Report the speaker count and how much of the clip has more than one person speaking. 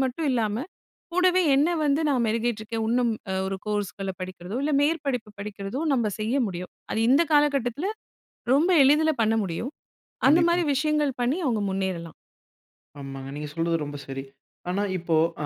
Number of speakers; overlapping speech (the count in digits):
2, about 2%